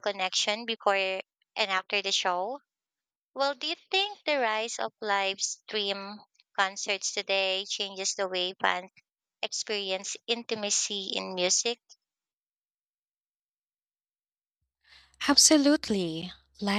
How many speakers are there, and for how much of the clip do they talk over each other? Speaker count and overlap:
2, no overlap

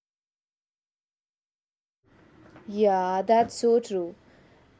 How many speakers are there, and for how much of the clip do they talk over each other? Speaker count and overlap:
1, no overlap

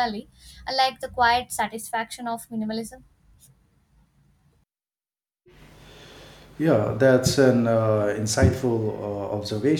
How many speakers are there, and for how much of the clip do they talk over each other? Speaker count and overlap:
2, no overlap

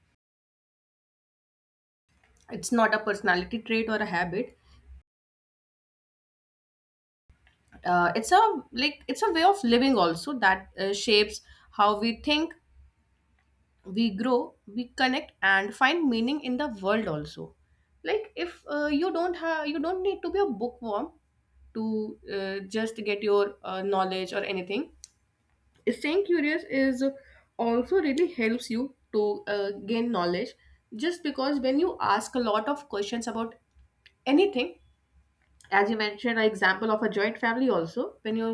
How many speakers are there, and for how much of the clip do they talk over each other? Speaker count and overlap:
1, no overlap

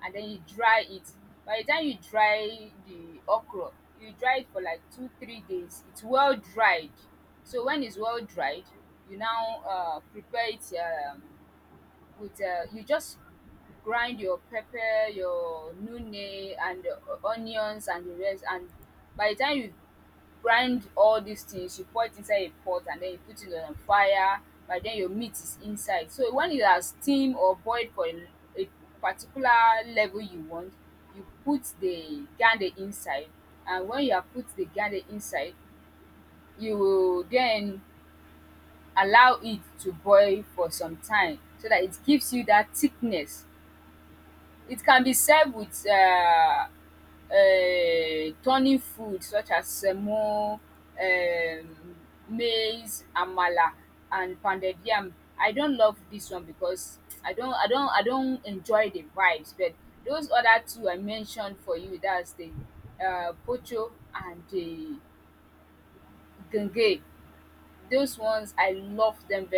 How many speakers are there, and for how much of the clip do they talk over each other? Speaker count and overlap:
1, no overlap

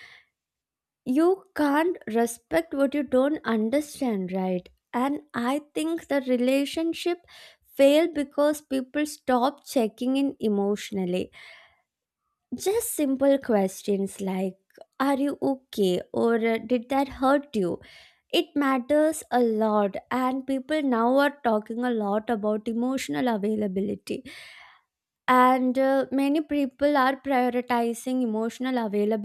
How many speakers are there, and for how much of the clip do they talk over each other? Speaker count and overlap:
1, no overlap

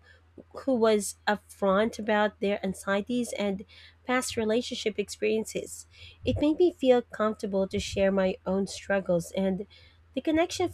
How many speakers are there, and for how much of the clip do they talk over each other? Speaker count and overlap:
1, no overlap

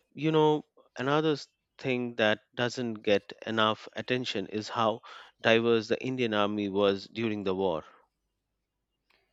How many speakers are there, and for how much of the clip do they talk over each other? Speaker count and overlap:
1, no overlap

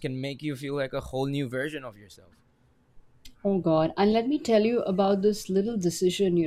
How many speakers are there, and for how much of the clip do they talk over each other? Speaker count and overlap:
2, no overlap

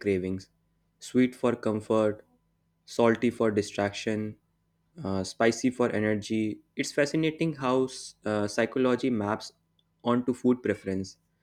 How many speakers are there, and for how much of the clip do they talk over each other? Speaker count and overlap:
1, no overlap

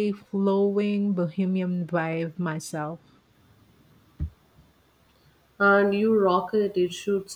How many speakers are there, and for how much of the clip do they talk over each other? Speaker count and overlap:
2, no overlap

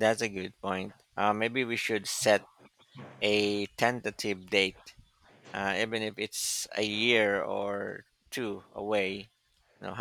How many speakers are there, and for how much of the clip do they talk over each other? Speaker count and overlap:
1, no overlap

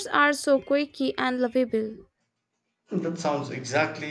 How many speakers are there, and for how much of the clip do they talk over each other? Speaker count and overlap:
2, no overlap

